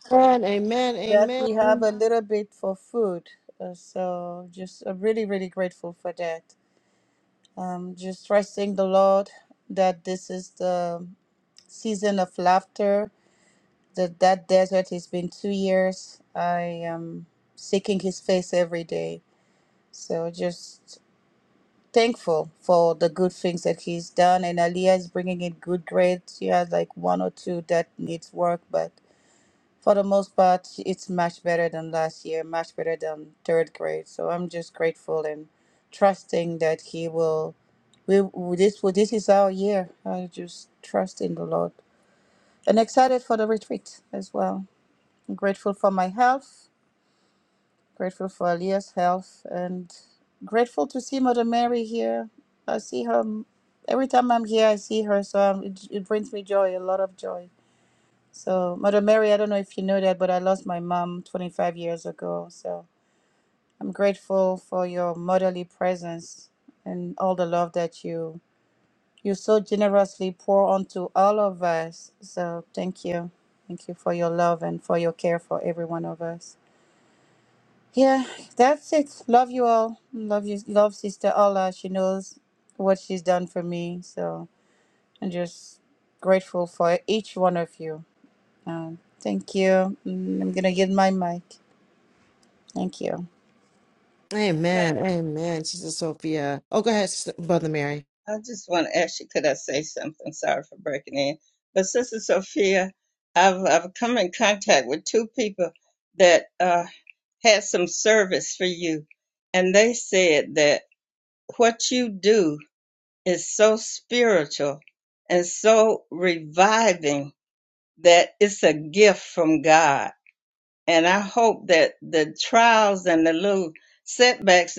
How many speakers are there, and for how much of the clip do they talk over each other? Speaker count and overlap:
3, about 1%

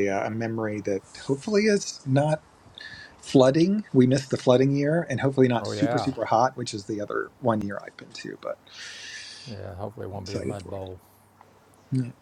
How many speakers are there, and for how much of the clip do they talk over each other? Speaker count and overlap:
2, about 8%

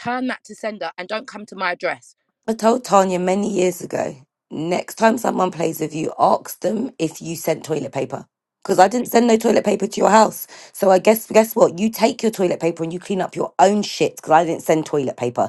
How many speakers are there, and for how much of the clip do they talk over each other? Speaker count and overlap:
2, no overlap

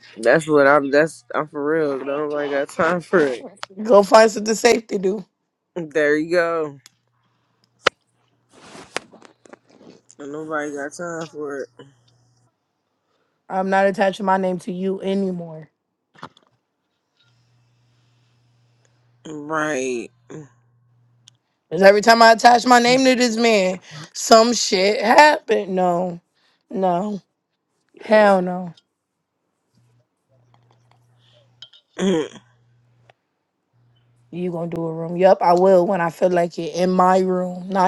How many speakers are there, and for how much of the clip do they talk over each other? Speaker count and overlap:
2, no overlap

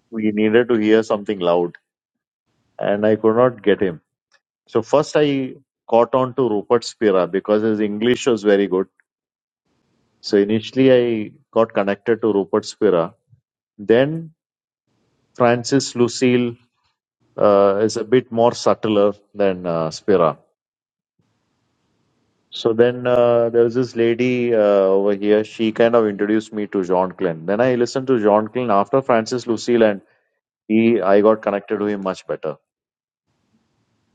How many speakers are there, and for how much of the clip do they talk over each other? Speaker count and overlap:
1, no overlap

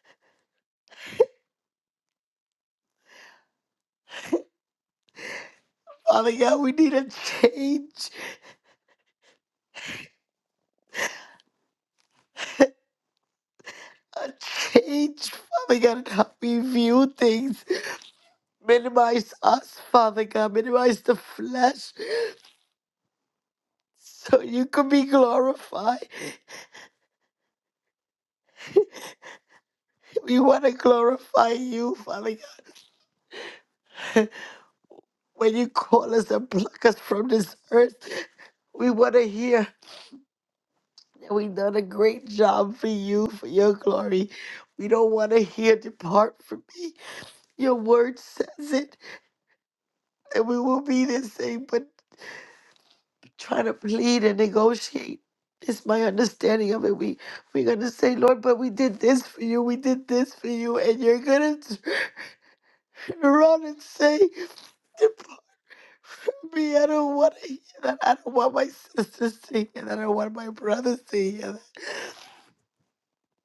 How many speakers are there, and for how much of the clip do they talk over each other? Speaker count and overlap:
1, no overlap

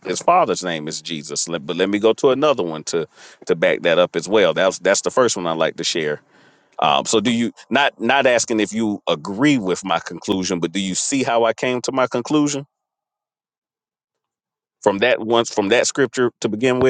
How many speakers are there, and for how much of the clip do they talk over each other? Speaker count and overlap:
1, no overlap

